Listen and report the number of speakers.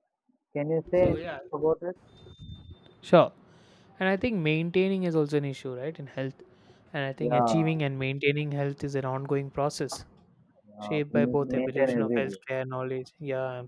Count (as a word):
two